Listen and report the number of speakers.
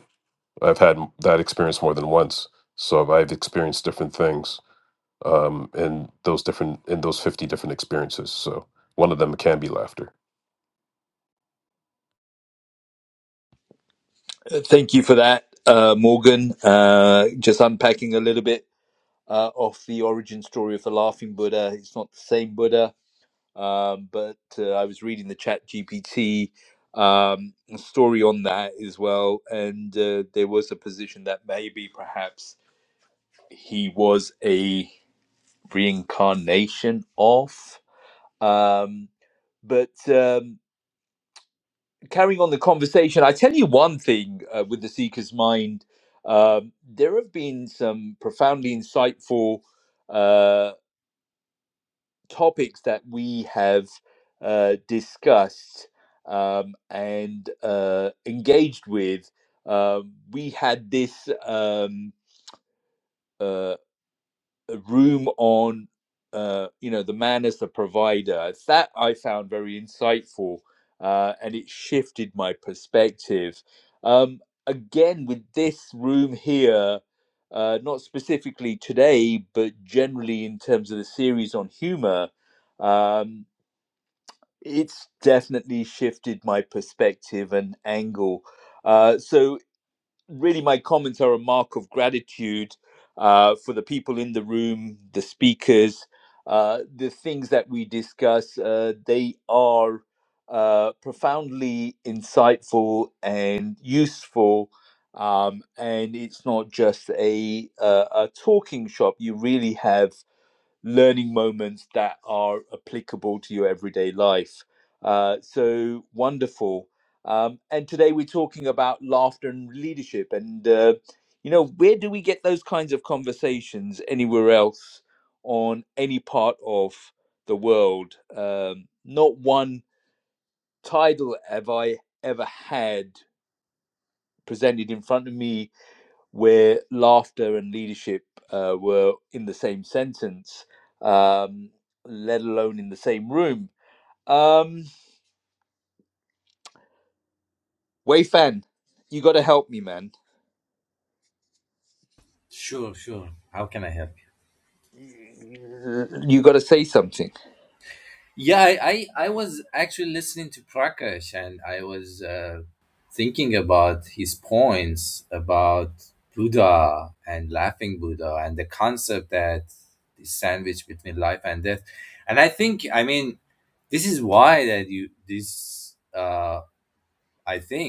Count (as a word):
three